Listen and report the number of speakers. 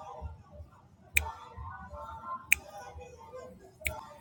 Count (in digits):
0